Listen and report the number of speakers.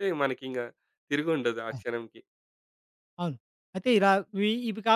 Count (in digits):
2